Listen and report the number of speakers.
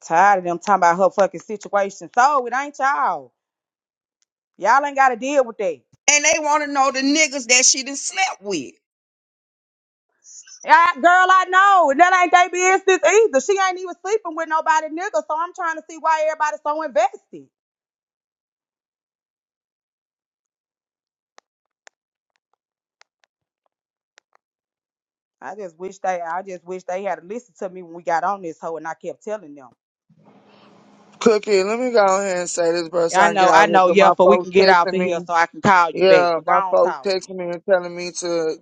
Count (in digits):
3